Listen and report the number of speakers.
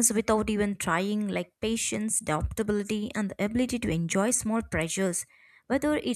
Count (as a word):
one